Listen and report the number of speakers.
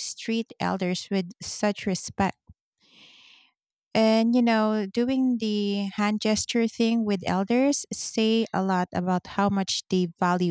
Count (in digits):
1